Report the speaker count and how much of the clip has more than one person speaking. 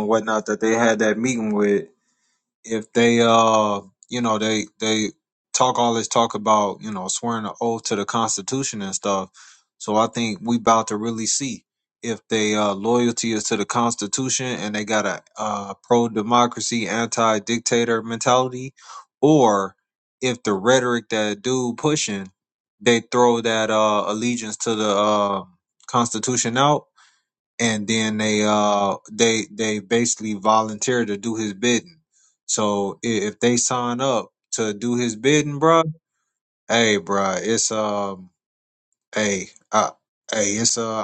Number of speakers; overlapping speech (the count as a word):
one, no overlap